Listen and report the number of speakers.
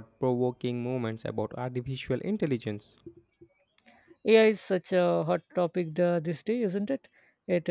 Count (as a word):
two